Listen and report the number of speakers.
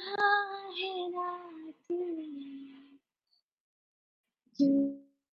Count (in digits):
1